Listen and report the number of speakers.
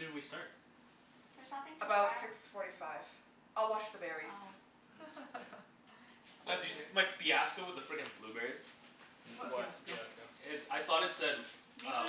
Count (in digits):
4